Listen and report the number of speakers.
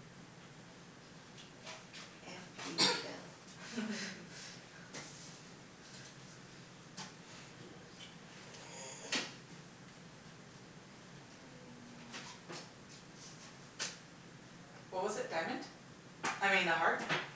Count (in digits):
2